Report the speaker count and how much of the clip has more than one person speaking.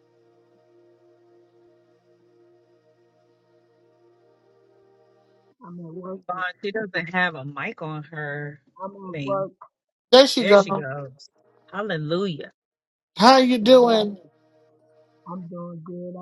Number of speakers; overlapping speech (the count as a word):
three, about 7%